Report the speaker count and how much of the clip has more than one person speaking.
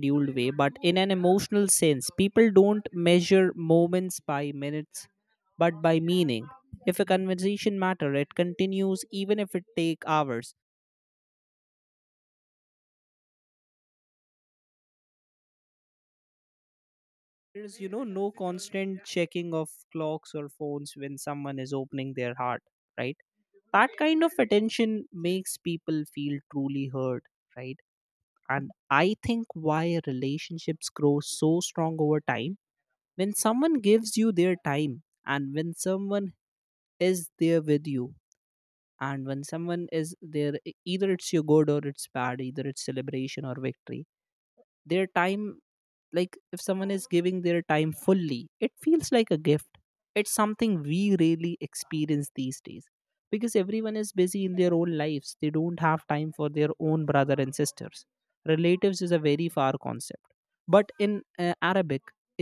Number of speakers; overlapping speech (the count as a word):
one, no overlap